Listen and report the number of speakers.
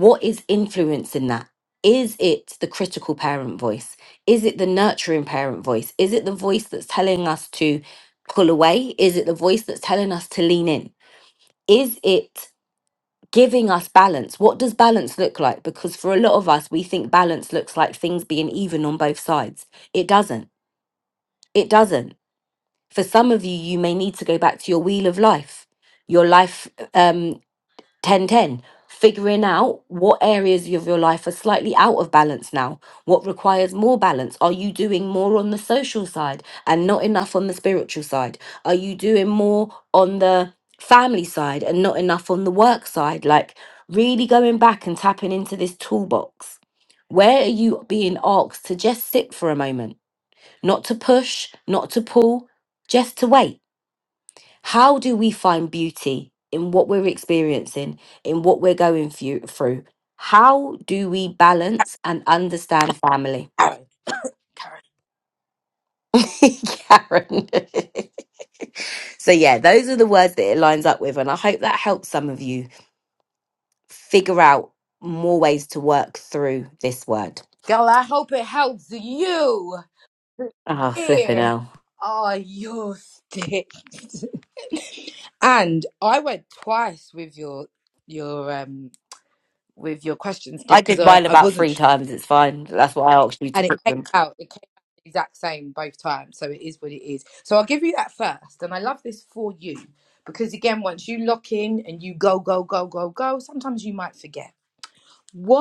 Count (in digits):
2